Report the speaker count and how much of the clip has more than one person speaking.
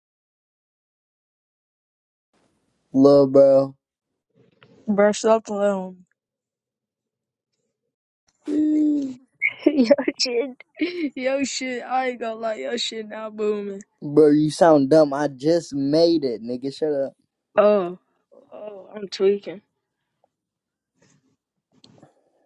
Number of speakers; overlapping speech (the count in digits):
2, no overlap